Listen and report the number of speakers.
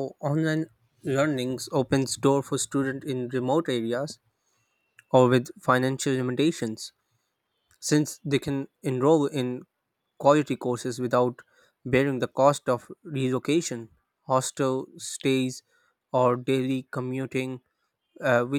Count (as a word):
one